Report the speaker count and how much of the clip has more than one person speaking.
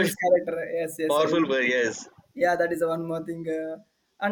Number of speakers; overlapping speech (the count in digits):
2, about 14%